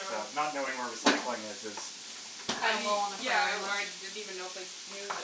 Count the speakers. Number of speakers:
3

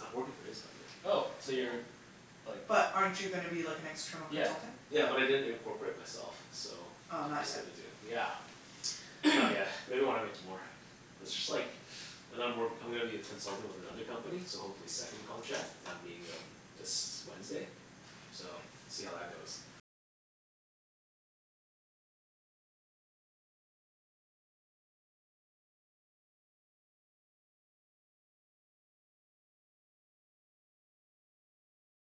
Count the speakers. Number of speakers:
3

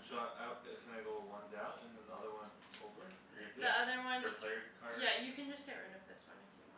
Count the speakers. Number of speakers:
3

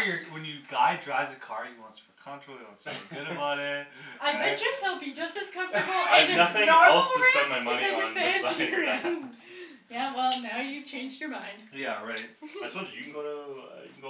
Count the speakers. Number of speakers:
3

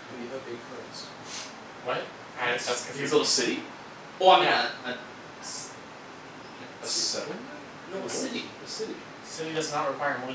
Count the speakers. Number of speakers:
3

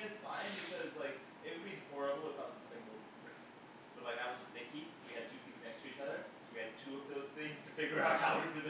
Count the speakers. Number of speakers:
1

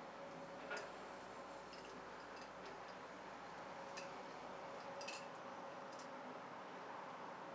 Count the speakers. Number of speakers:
0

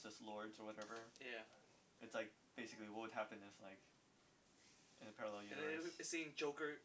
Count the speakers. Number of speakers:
2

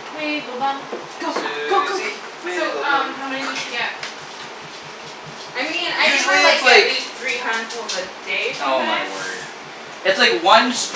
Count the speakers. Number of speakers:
3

